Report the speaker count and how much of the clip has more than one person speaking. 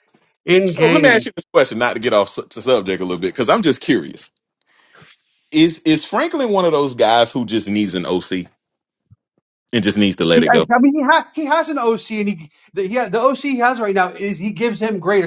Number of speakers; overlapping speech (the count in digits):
2, about 6%